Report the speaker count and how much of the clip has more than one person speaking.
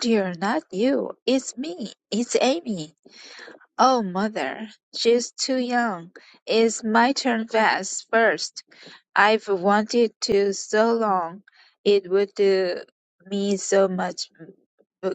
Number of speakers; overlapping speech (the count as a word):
one, no overlap